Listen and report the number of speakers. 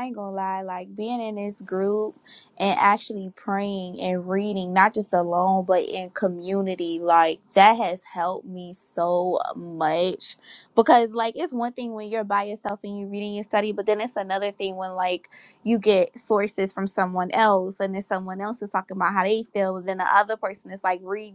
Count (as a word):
one